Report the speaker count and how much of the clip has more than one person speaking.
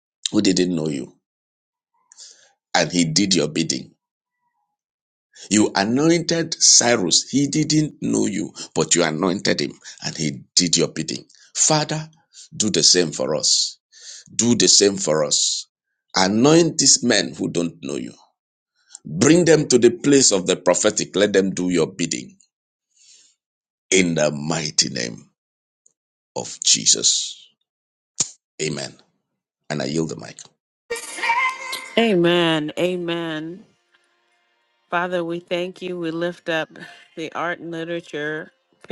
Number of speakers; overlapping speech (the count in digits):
2, no overlap